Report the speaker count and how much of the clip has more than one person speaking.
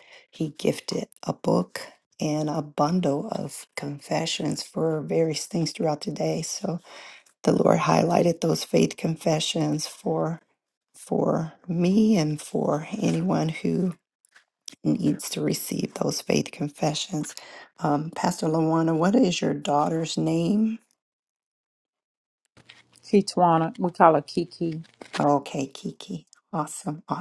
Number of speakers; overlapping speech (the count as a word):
two, no overlap